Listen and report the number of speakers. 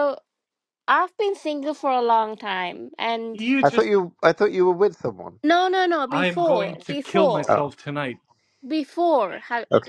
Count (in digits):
3